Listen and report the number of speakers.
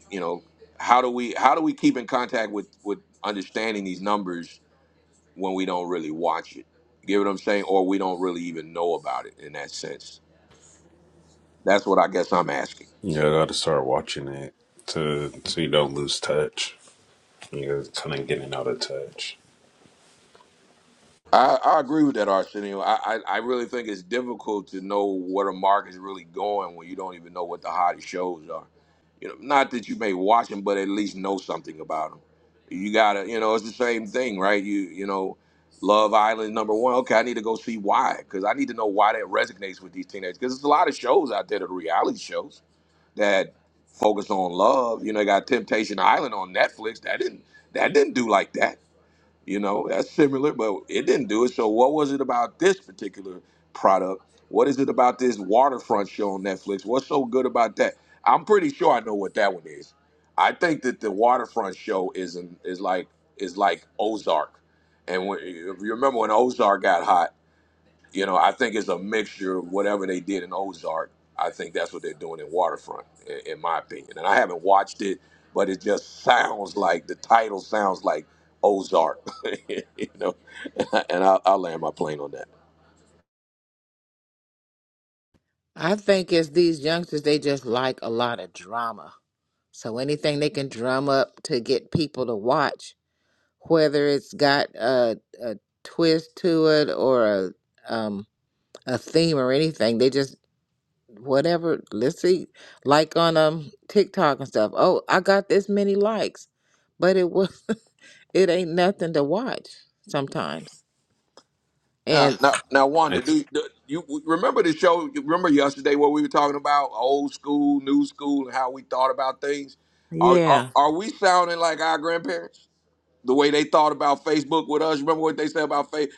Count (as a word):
three